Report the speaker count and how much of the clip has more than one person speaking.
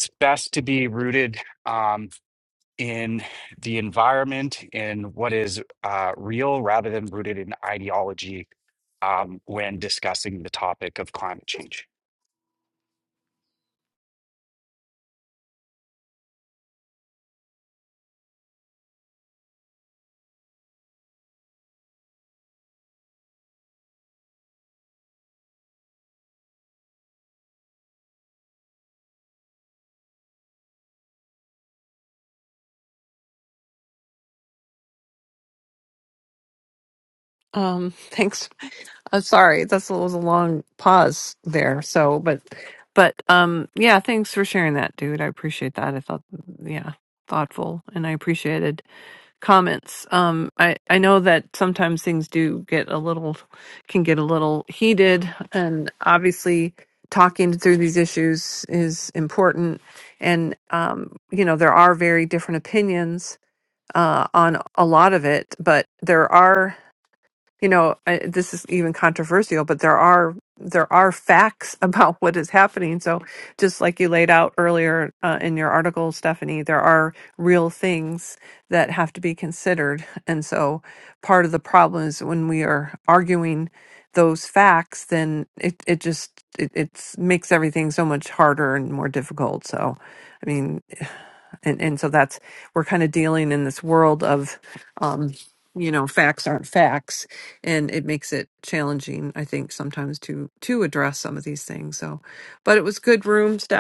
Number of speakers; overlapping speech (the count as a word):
two, no overlap